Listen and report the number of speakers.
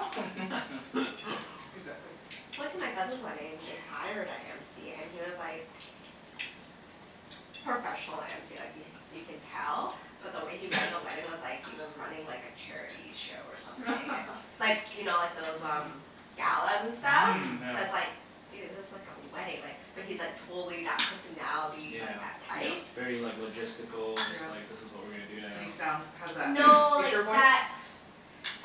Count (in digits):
3